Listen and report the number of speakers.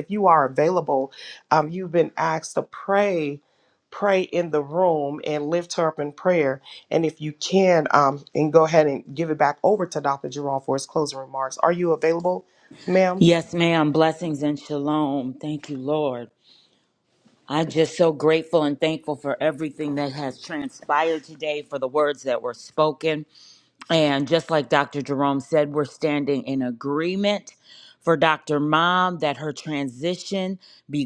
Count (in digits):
2